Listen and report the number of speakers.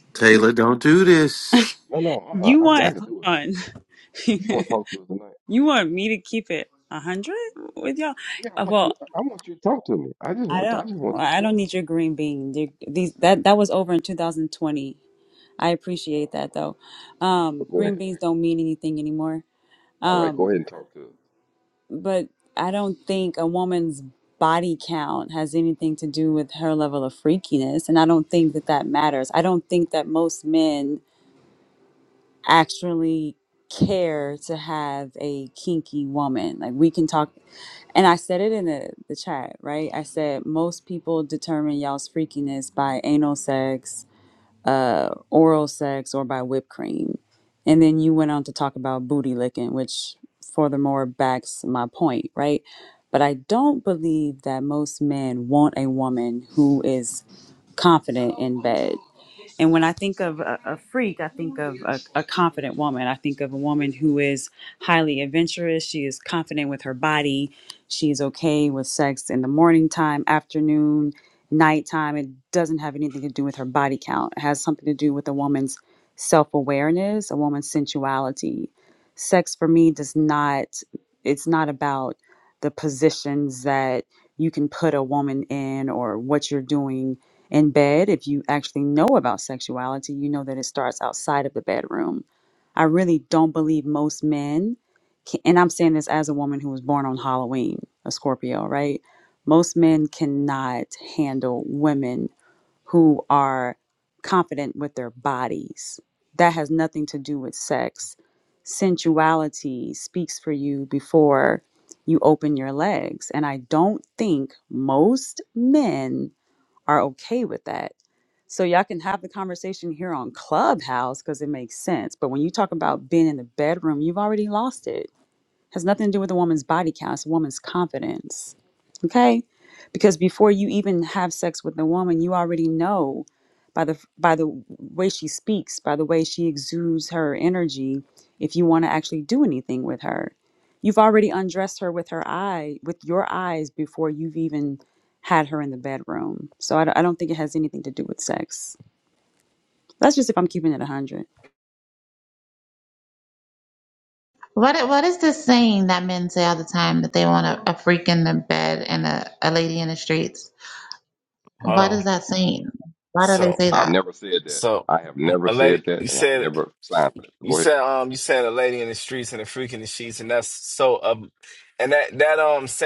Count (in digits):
5